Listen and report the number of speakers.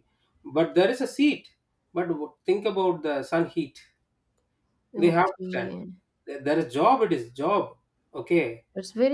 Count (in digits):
2